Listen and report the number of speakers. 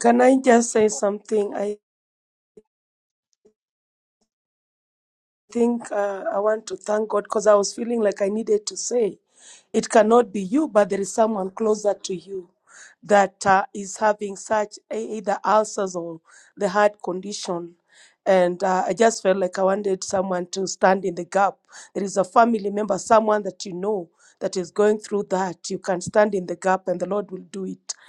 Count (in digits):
1